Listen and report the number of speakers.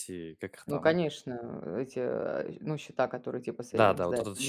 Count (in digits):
2